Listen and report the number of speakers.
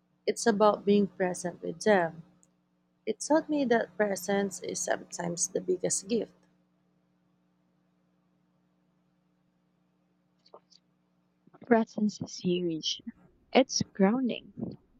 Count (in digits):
2